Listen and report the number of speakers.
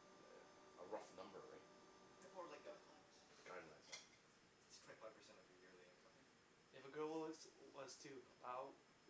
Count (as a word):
three